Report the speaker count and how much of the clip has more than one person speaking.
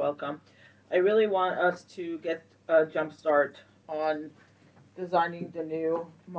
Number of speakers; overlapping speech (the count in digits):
1, no overlap